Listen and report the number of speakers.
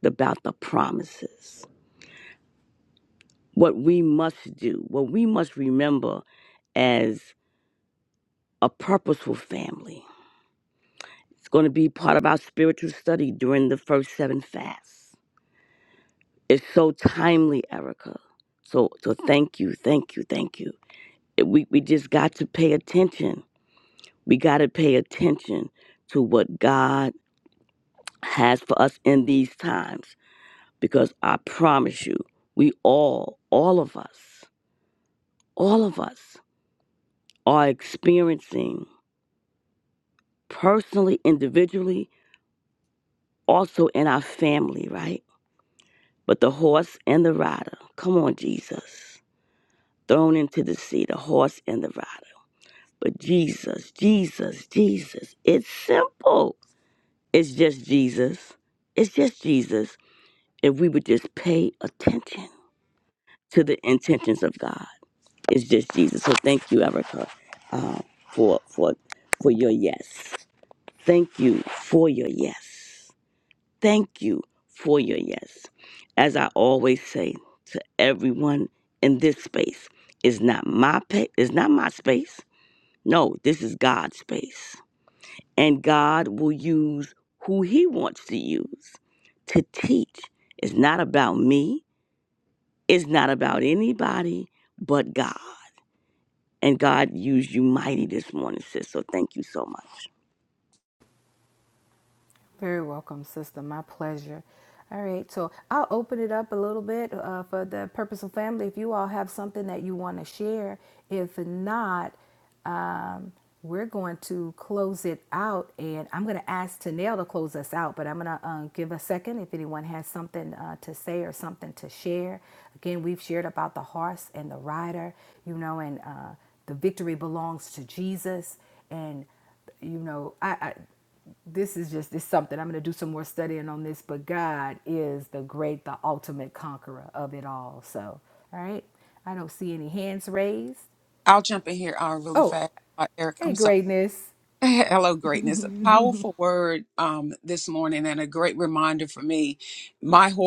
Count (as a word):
three